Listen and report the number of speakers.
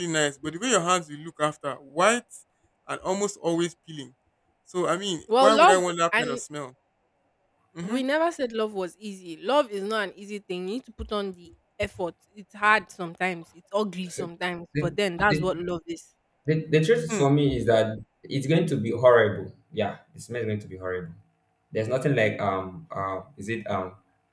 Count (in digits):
3